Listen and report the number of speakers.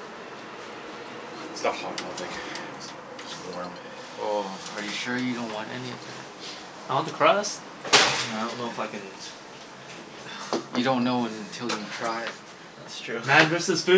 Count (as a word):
four